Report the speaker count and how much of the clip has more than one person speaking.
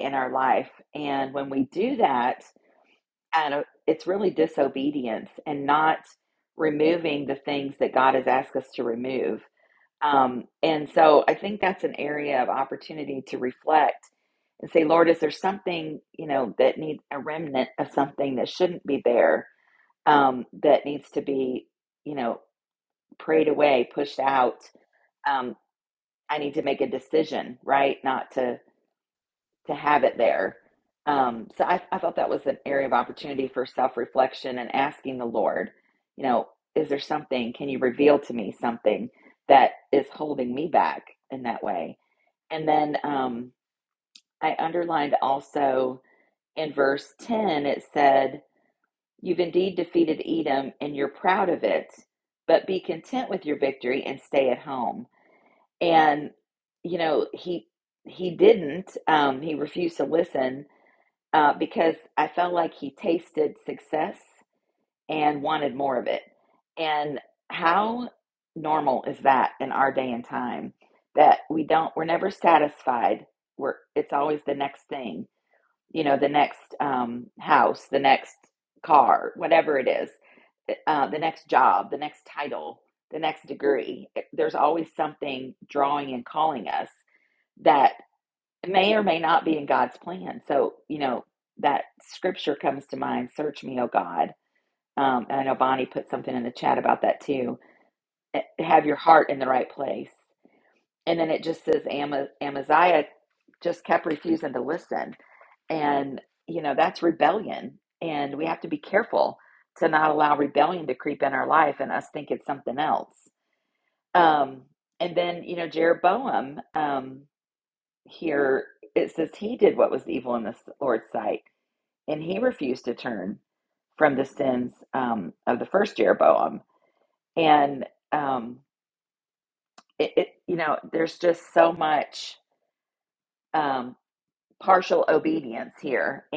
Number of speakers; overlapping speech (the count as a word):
one, no overlap